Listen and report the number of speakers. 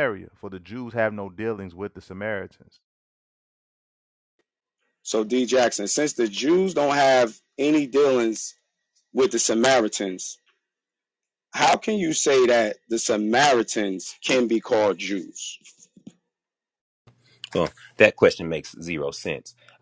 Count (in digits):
3